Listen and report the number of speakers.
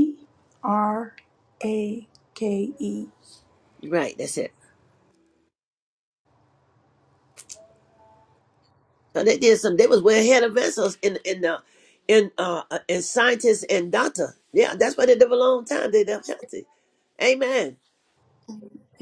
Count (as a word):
two